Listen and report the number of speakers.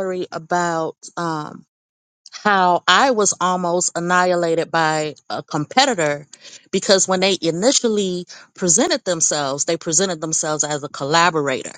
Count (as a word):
one